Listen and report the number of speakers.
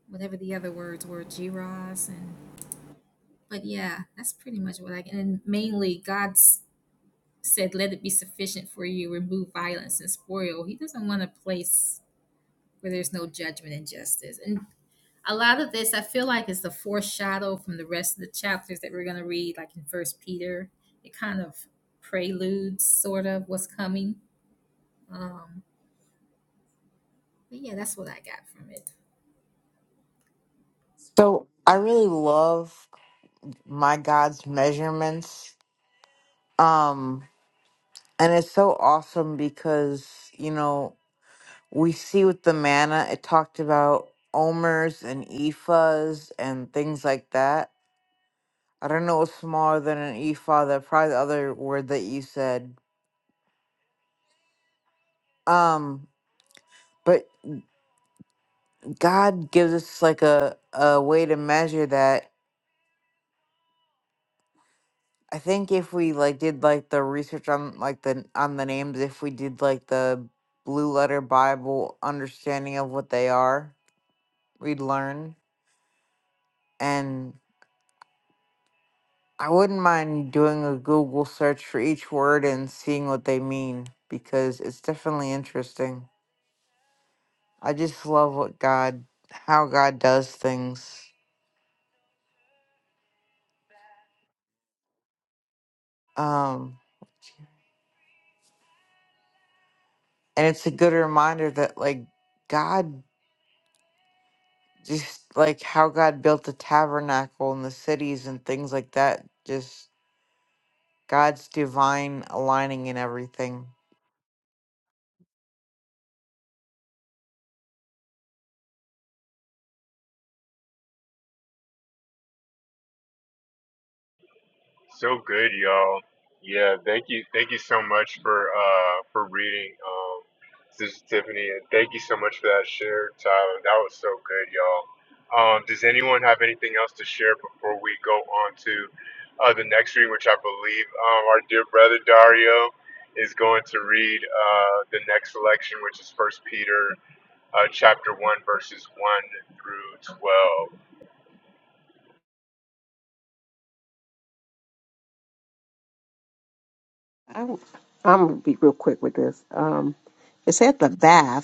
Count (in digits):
4